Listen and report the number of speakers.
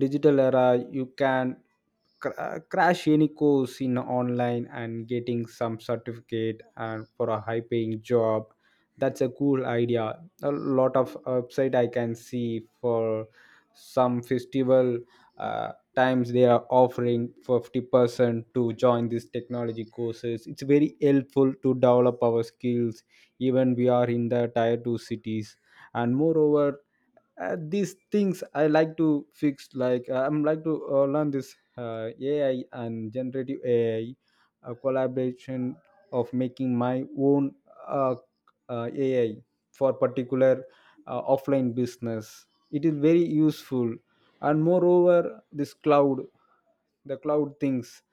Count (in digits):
1